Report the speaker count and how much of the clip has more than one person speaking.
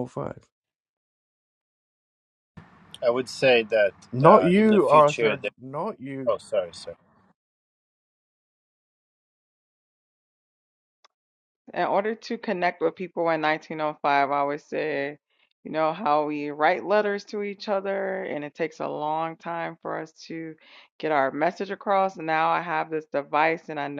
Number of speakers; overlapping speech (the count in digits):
3, about 6%